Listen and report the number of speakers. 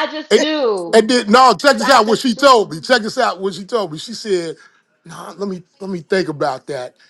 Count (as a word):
two